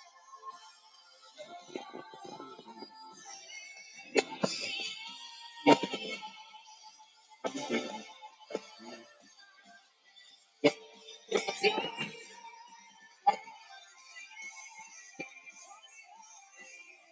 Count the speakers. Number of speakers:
0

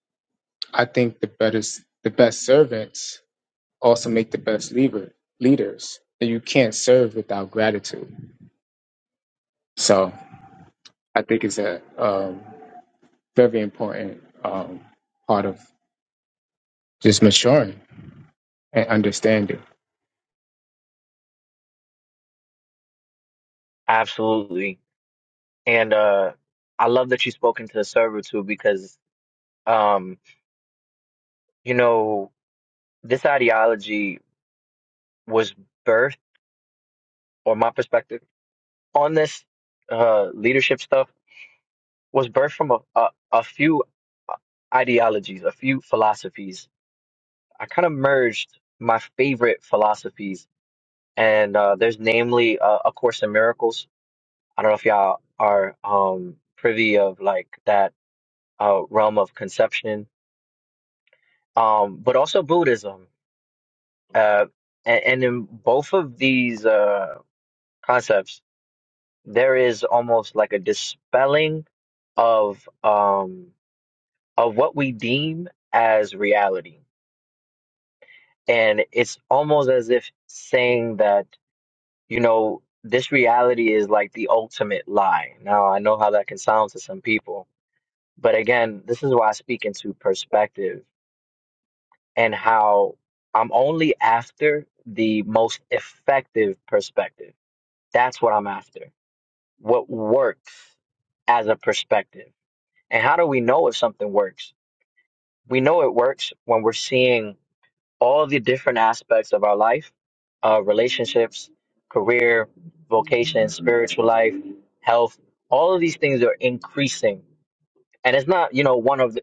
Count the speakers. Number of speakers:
2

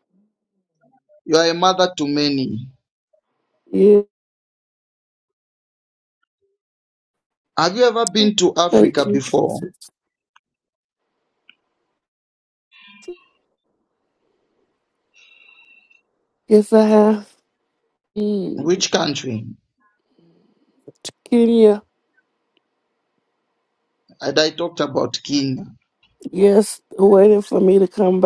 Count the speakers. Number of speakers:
2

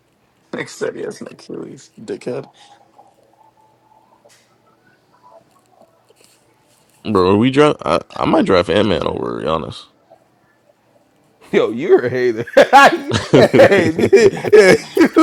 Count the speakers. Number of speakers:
3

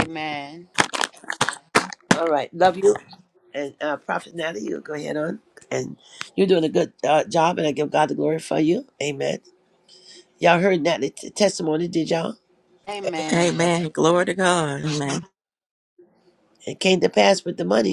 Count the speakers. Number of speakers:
3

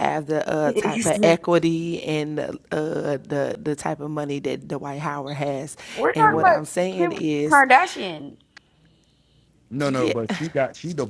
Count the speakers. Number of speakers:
3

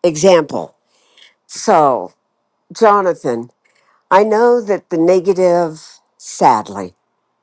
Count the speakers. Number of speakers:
1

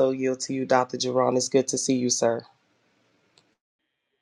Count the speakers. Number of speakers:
1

